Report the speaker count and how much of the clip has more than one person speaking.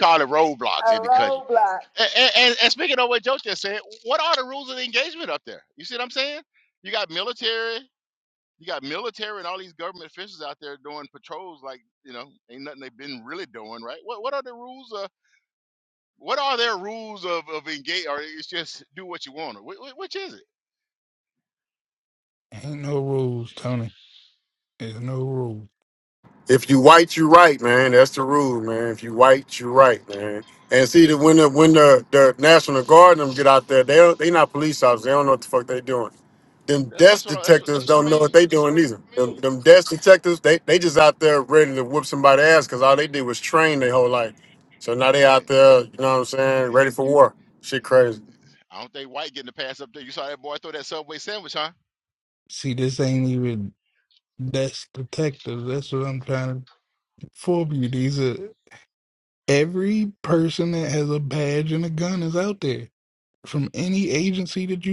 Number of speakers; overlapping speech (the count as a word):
four, about 4%